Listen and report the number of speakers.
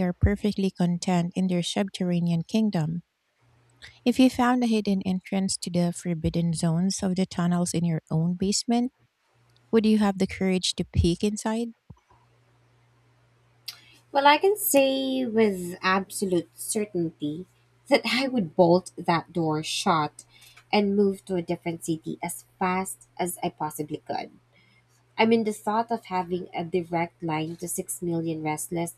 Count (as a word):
two